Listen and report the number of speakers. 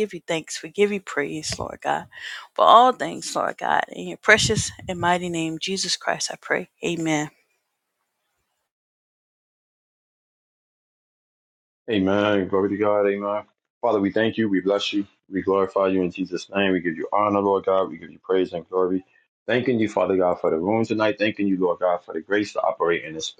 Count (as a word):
two